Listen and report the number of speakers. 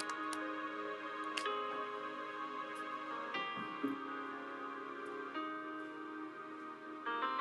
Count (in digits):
0